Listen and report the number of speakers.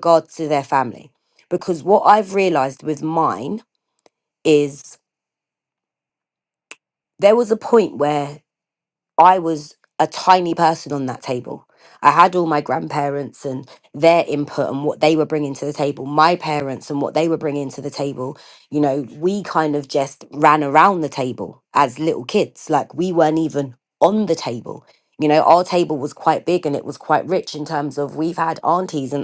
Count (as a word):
one